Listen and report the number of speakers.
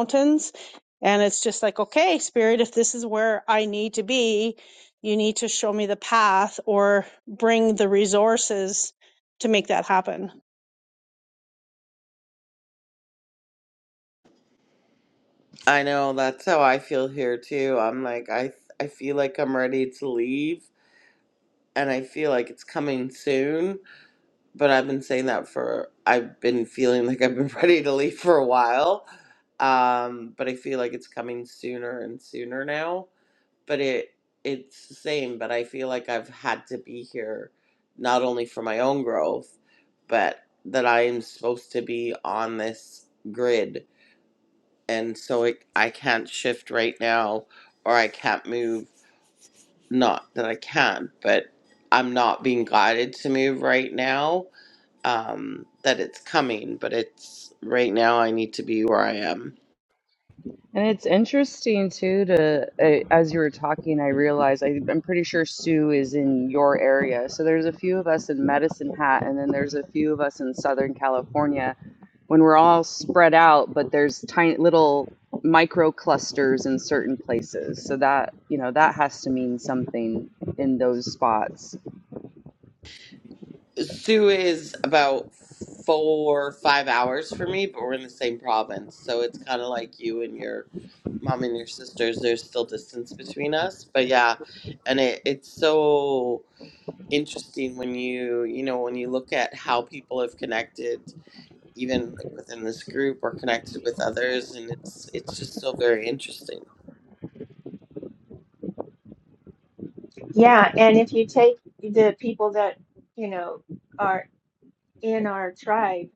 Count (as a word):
four